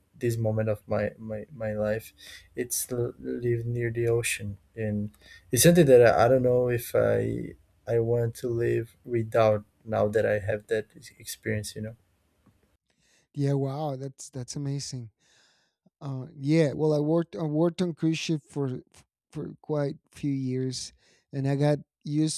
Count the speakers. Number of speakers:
2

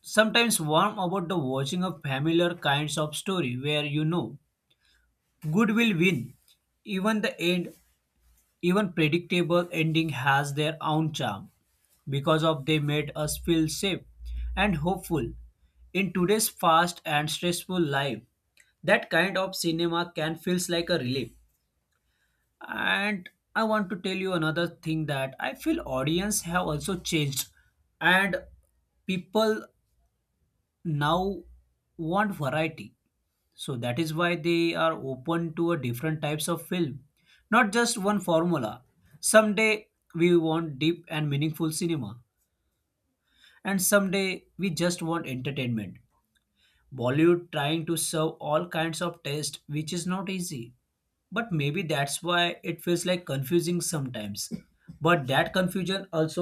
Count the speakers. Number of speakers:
1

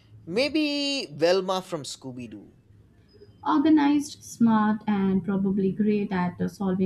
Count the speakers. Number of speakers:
2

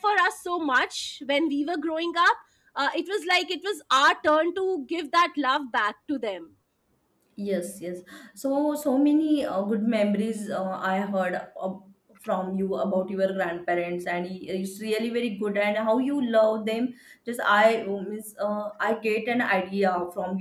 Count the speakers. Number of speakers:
2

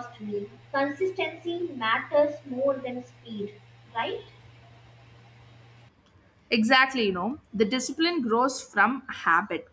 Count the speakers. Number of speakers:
2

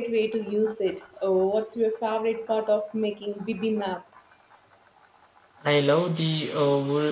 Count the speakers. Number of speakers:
2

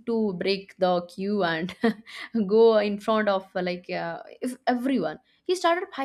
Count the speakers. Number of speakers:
1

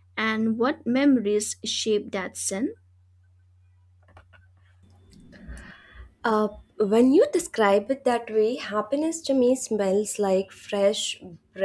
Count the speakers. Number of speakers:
2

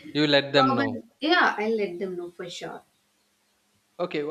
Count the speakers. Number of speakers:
2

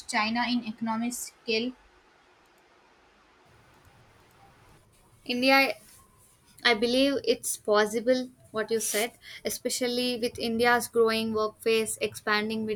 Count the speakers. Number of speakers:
2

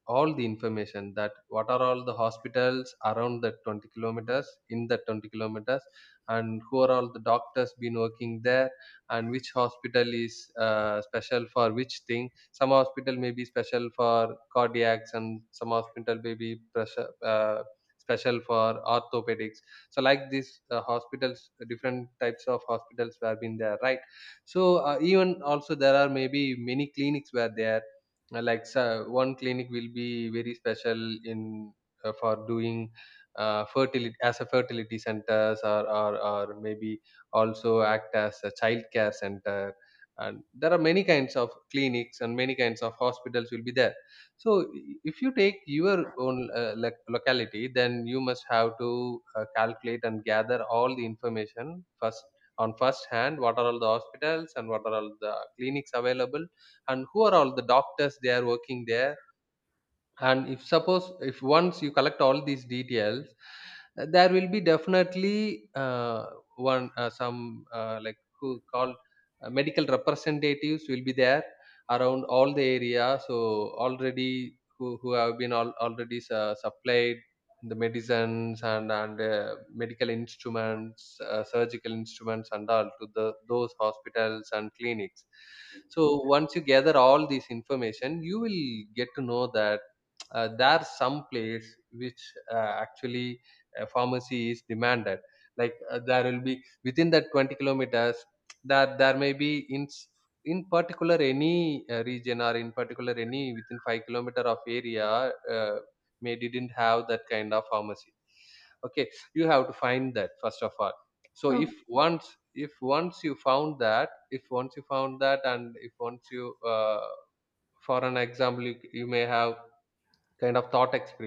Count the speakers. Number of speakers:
1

